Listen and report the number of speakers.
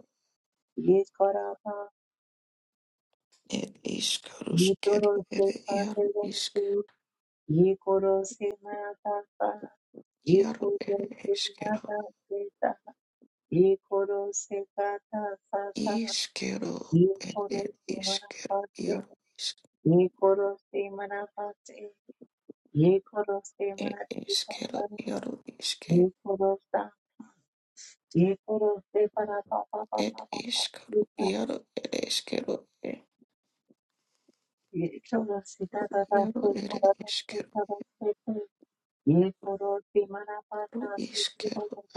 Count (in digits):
2